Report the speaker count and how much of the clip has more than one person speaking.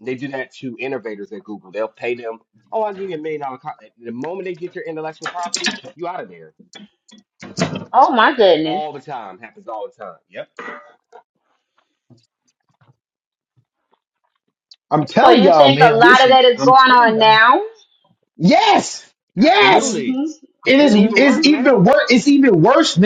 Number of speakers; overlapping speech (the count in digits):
3, about 18%